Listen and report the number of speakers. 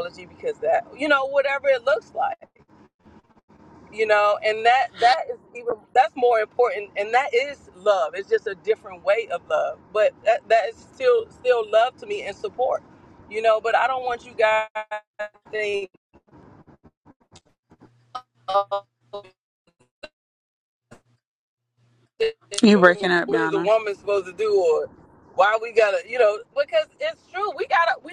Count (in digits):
2